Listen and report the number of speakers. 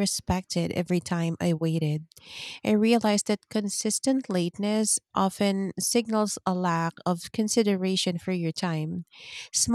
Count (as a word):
one